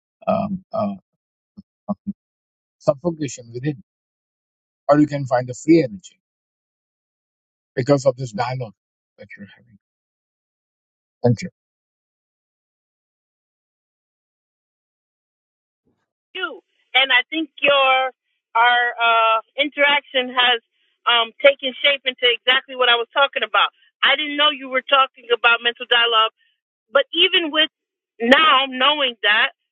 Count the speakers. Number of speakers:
two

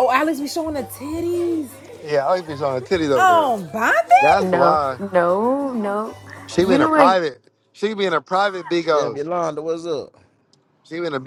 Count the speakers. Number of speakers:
four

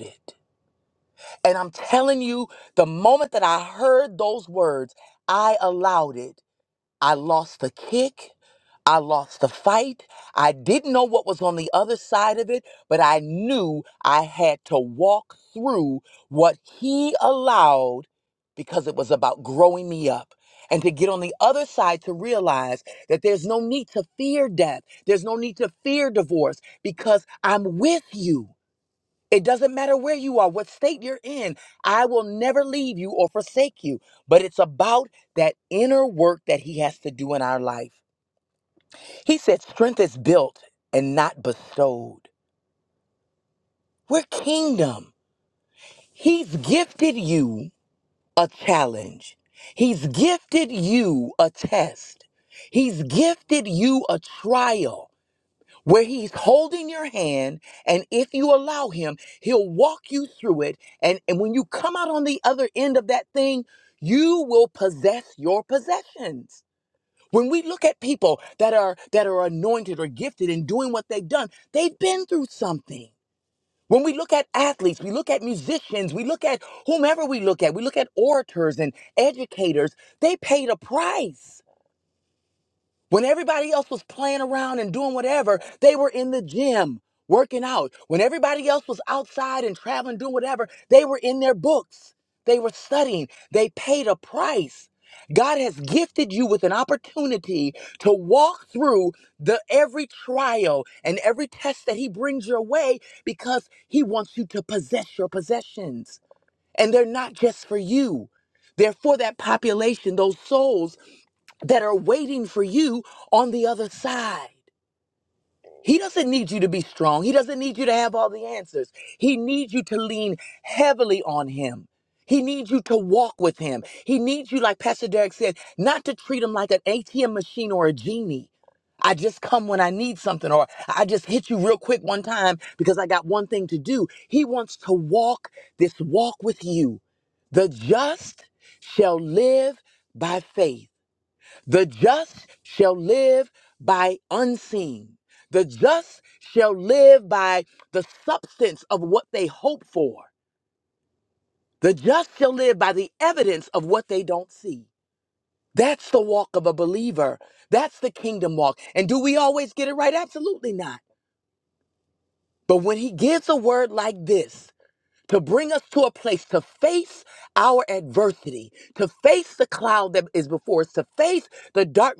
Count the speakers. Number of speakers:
one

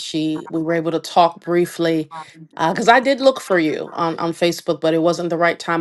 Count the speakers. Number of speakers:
one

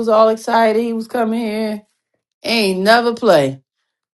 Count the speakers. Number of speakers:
one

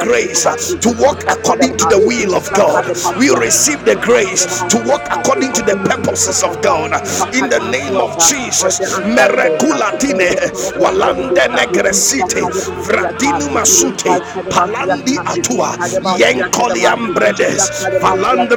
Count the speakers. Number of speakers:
two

